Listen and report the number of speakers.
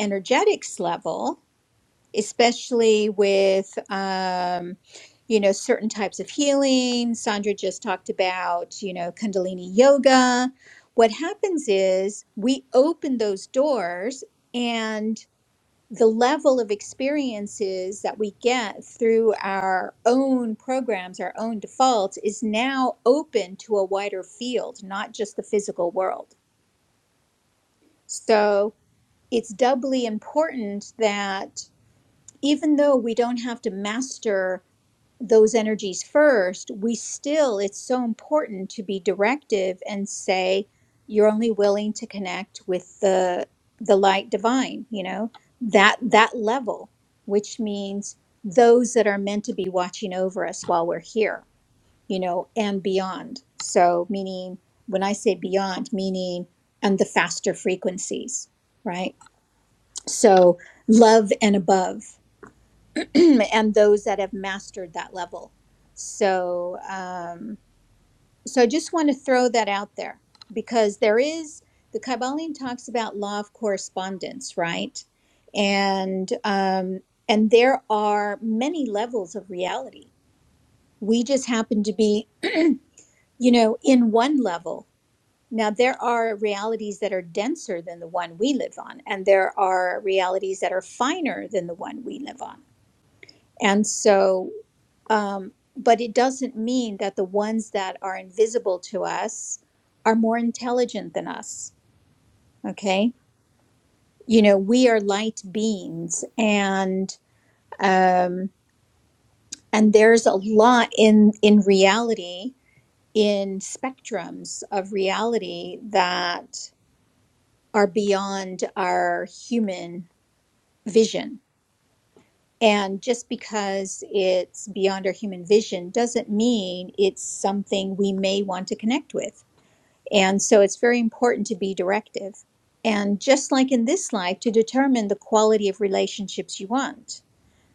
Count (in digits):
1